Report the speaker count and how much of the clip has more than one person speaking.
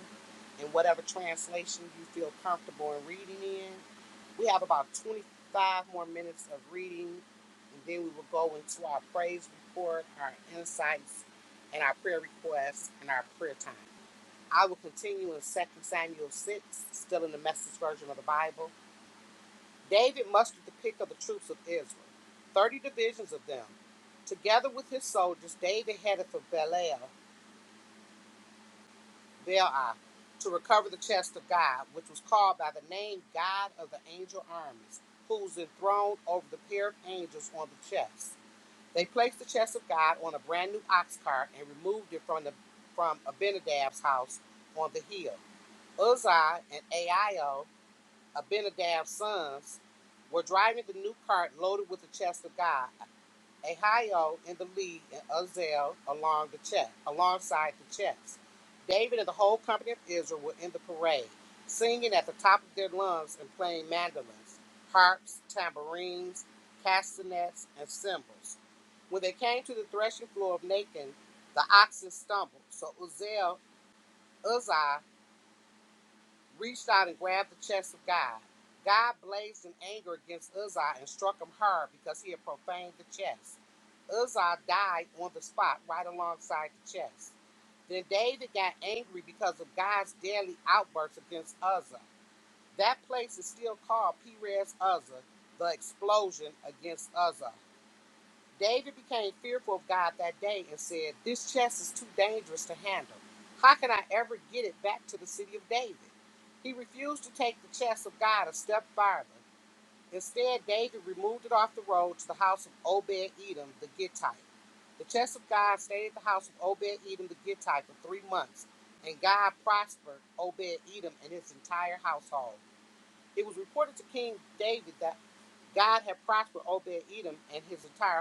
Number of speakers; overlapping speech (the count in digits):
1, no overlap